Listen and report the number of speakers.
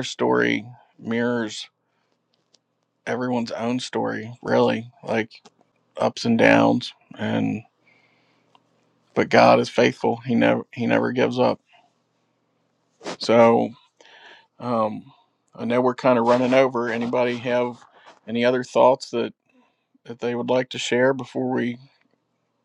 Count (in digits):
1